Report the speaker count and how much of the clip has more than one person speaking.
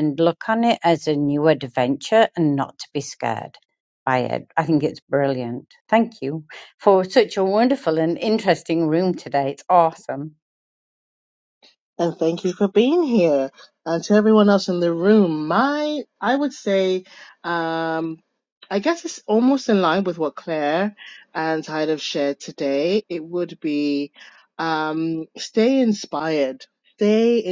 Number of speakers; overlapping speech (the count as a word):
two, no overlap